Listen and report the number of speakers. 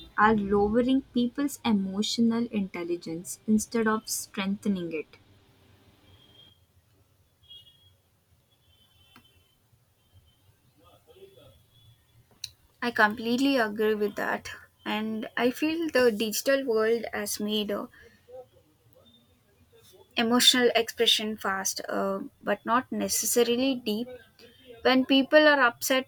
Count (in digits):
2